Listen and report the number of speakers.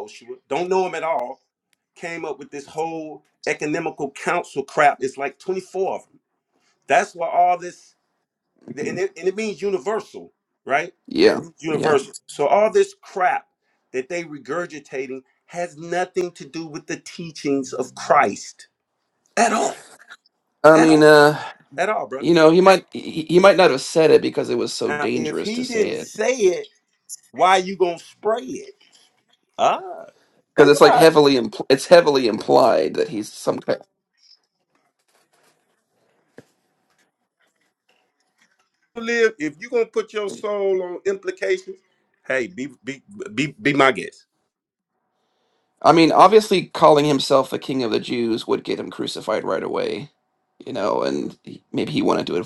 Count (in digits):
2